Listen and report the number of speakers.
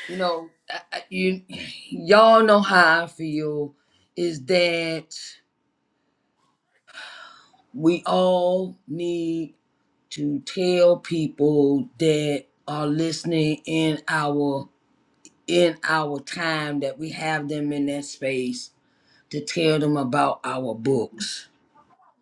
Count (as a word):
one